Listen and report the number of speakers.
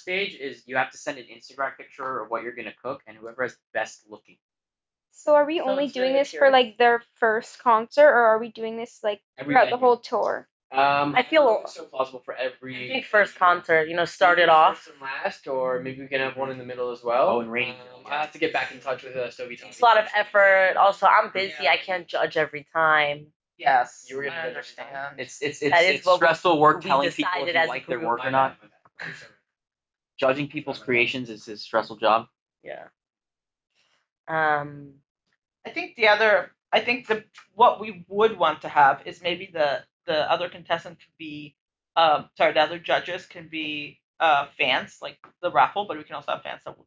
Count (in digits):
5